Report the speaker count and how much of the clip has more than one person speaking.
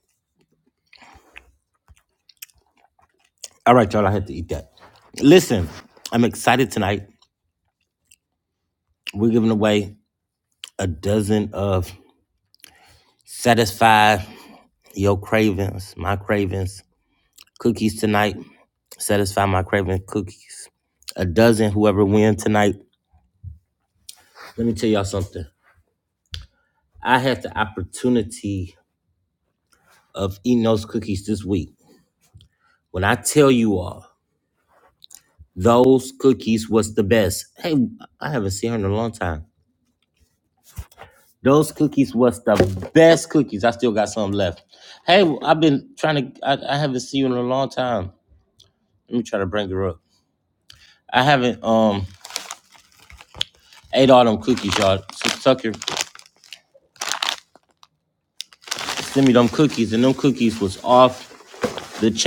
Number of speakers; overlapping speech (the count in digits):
1, no overlap